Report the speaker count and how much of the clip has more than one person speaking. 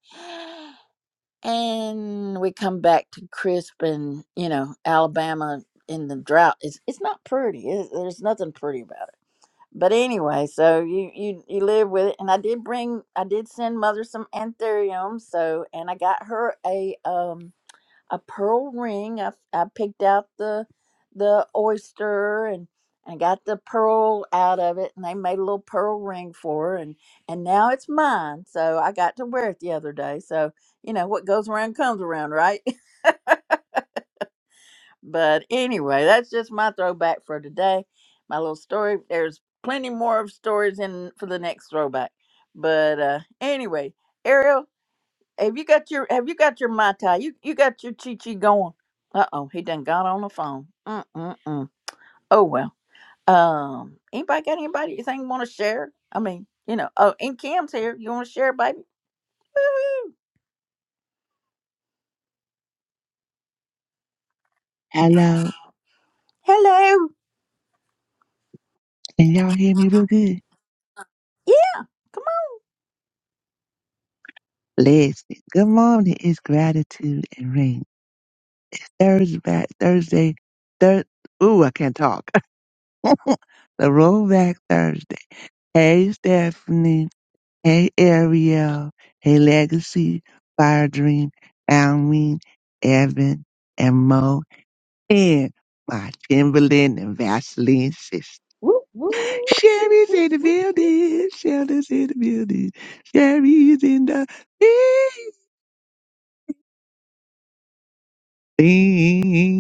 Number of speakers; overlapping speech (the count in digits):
3, about 1%